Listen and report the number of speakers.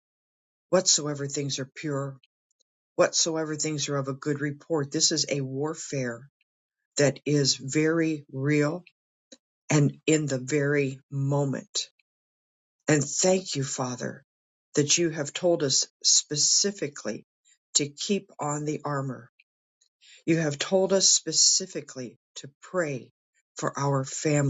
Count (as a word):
one